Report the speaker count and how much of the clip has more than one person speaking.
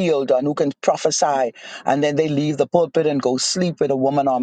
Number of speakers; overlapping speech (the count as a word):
one, no overlap